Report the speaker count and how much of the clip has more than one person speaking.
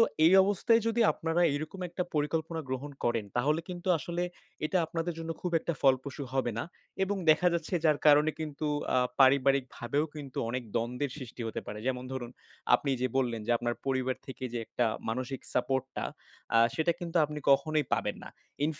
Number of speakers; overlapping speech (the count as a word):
one, no overlap